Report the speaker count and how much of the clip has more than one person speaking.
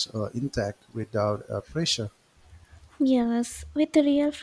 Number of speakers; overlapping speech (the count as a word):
two, no overlap